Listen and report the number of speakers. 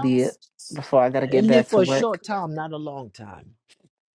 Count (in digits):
2